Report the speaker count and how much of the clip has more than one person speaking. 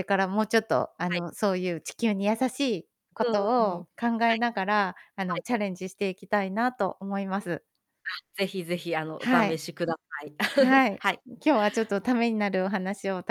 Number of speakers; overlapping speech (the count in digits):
2, about 12%